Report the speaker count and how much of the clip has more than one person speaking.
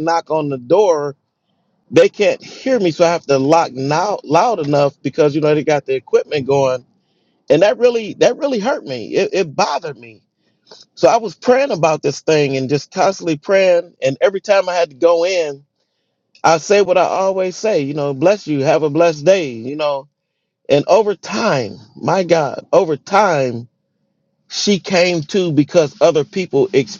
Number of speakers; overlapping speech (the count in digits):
1, no overlap